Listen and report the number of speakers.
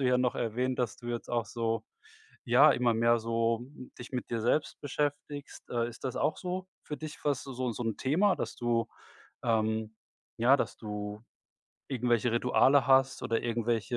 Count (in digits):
1